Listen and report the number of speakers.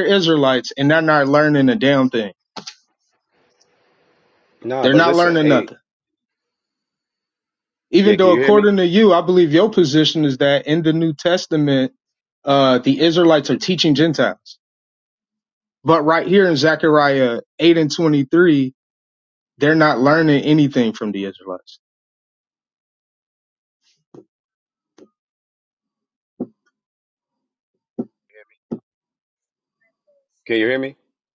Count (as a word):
two